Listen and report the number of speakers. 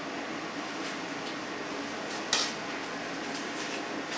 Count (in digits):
0